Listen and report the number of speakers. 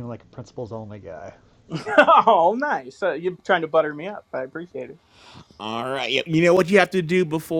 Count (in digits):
3